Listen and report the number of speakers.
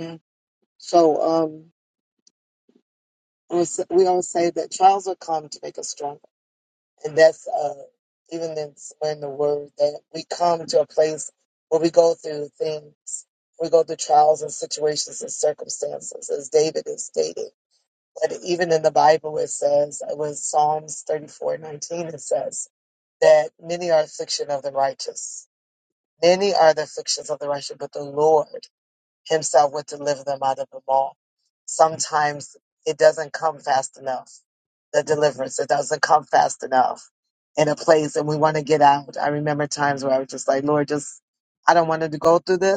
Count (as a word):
one